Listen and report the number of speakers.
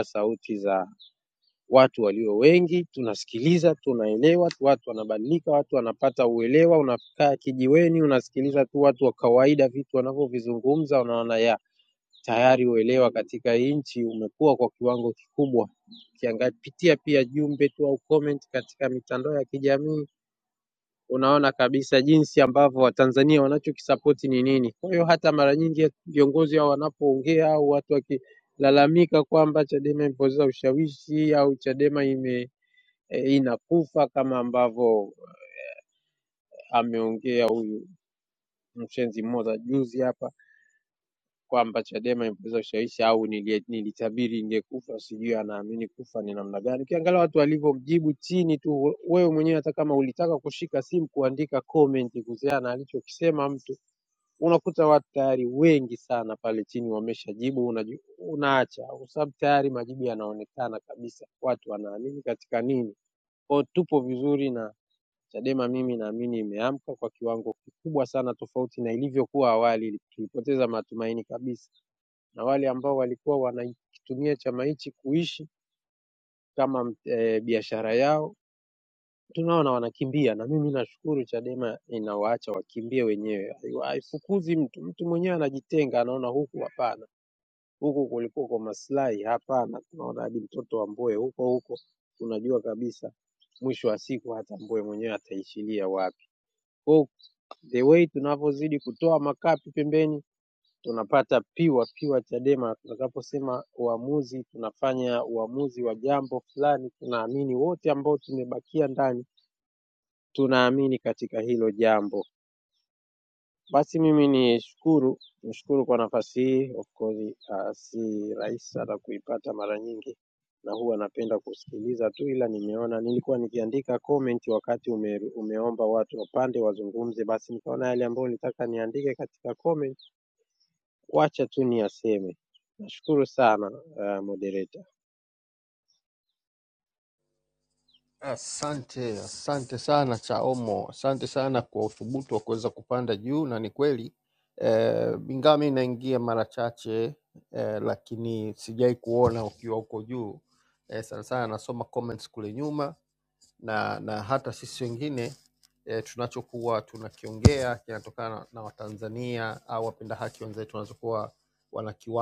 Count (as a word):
two